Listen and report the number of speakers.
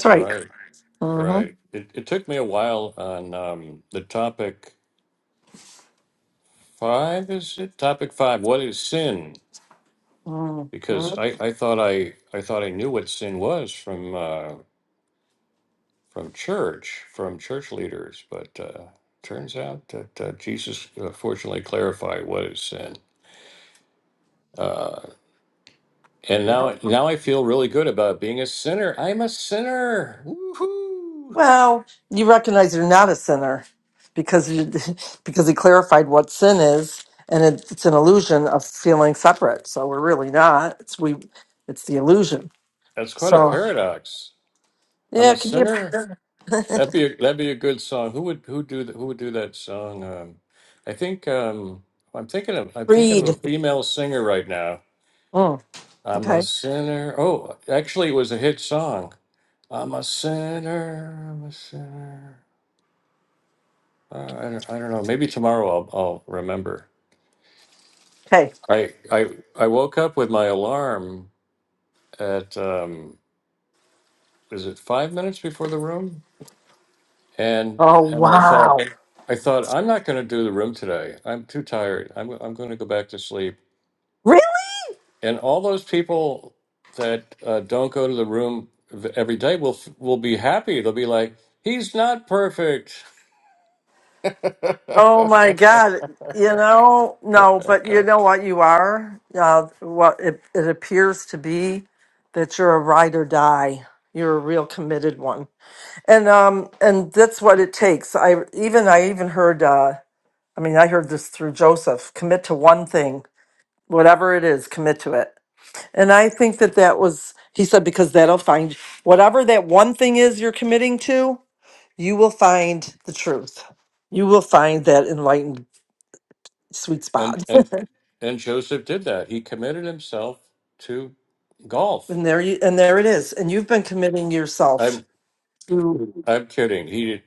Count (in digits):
2